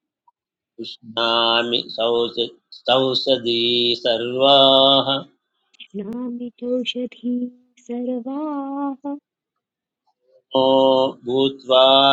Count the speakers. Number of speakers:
two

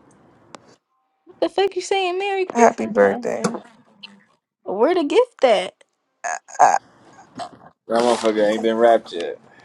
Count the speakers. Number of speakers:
three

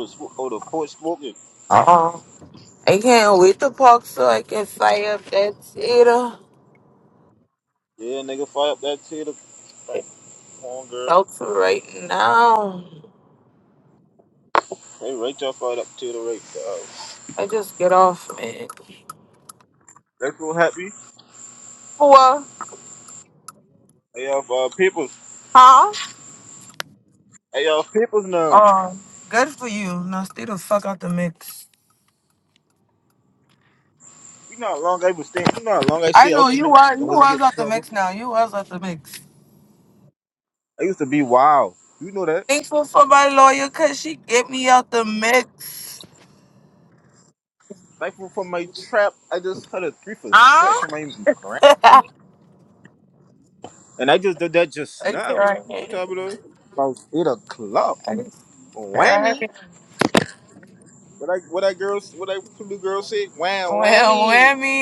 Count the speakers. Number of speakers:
two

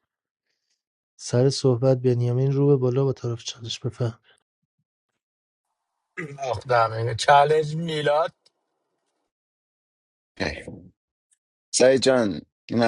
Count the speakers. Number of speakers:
three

